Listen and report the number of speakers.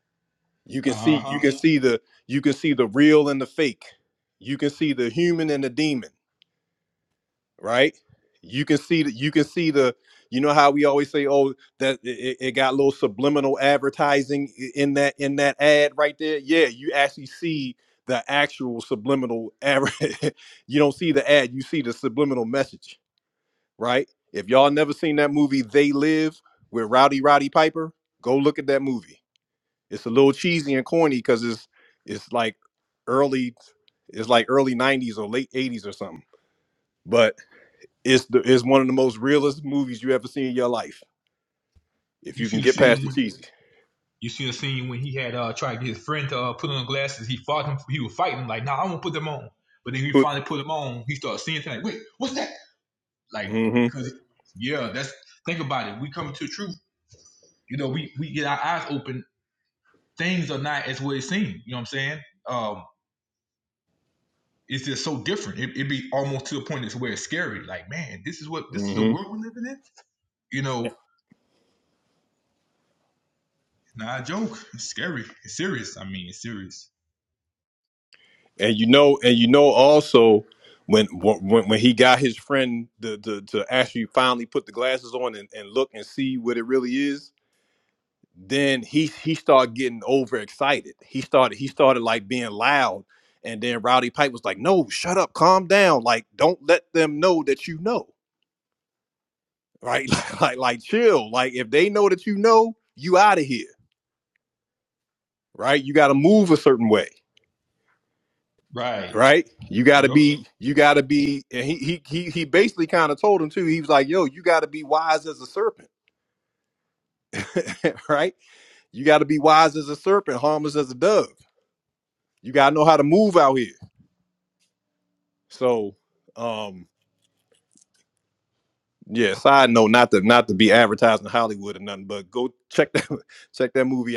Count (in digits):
2